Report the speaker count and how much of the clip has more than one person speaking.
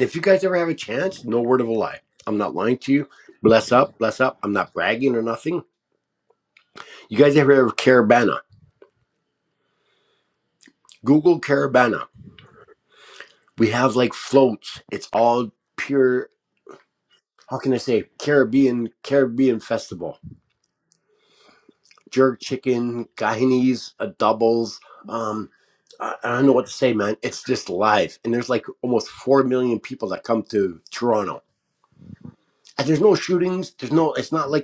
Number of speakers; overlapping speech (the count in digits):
1, no overlap